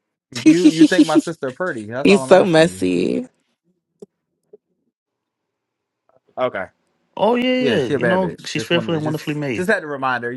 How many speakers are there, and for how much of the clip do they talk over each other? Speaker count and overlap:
3, about 23%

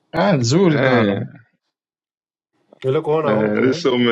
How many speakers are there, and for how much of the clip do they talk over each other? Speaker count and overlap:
3, about 27%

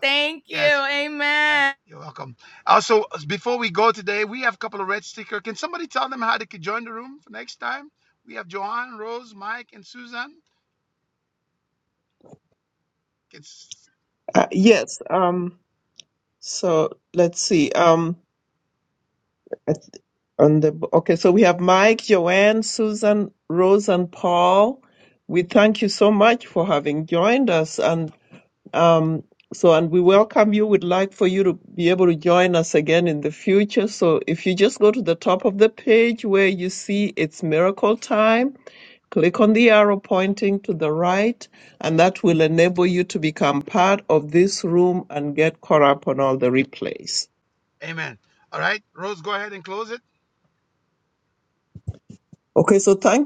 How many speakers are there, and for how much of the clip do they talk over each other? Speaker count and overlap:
3, about 1%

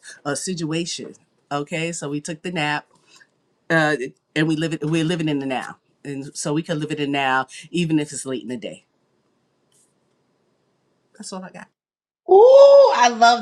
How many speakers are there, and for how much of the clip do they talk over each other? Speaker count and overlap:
2, no overlap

